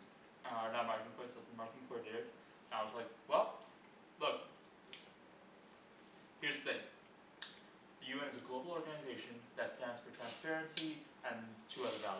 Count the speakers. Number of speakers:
1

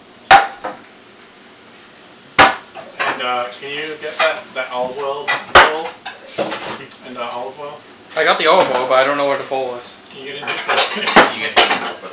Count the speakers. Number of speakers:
3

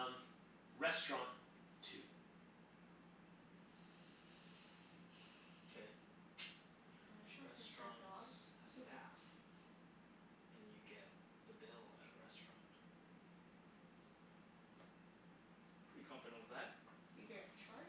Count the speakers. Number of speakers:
3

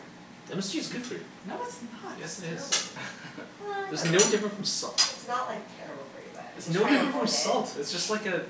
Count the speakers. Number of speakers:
3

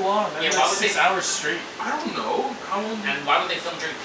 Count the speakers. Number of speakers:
3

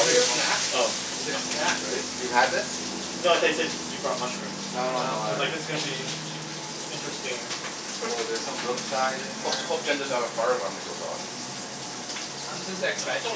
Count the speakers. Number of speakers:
4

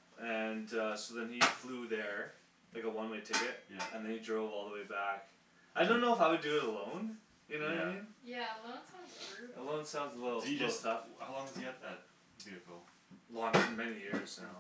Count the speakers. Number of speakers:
3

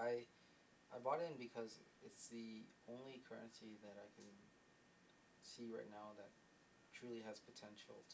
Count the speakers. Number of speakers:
1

